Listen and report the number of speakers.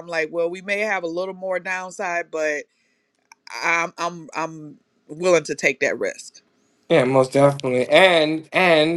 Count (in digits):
2